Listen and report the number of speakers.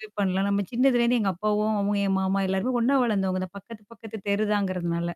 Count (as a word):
one